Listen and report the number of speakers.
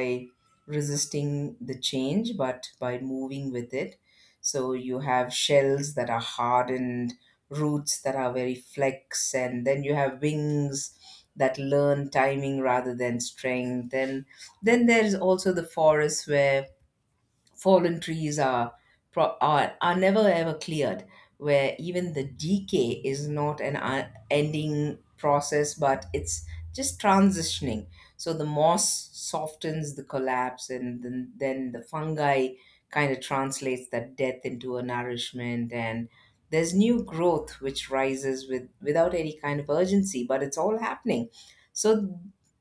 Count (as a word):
one